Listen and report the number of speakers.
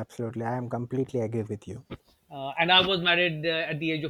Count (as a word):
two